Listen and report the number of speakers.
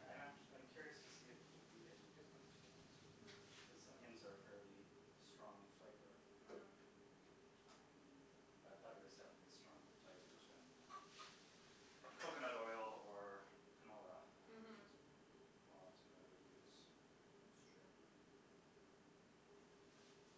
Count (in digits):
2